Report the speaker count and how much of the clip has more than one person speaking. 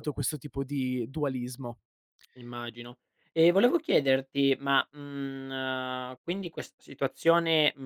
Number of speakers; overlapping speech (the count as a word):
two, about 1%